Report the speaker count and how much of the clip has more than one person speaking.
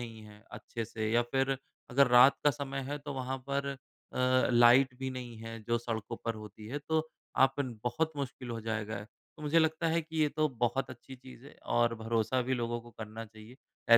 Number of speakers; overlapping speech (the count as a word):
one, no overlap